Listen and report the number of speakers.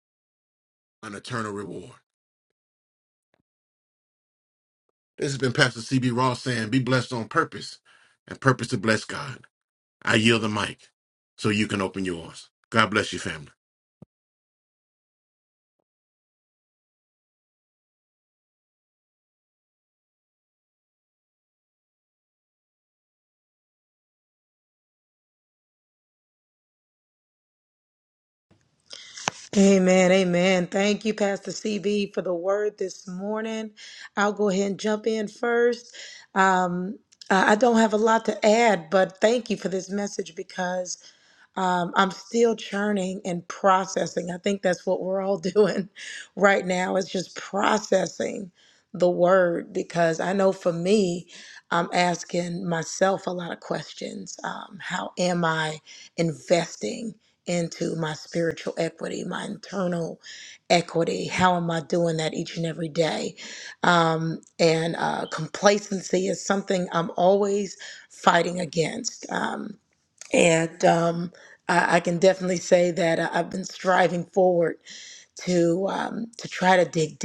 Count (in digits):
2